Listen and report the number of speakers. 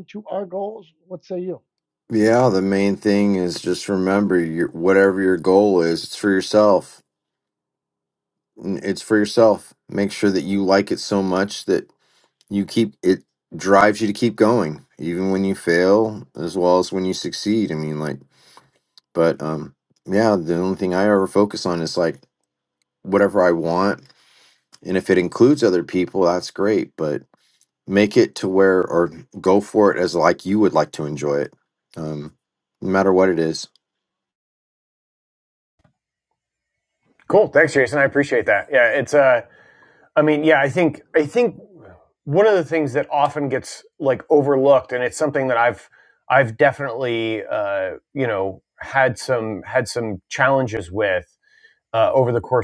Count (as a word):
three